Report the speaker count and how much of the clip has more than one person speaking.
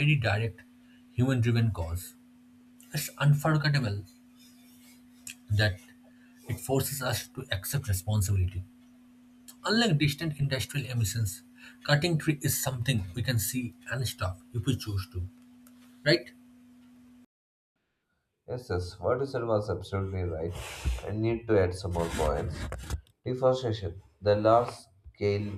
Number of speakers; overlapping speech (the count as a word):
two, no overlap